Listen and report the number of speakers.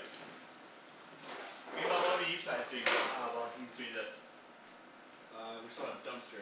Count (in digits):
2